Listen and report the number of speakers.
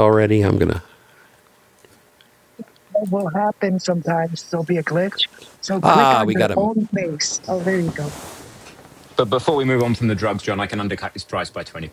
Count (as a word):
three